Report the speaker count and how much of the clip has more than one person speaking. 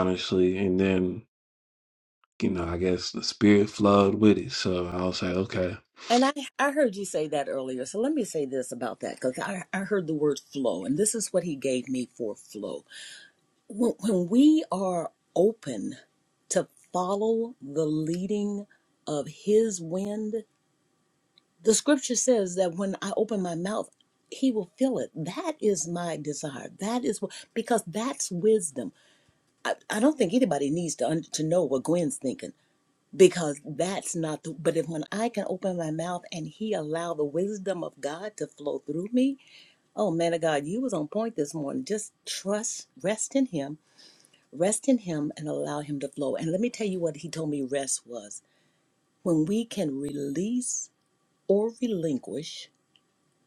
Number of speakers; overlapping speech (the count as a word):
two, no overlap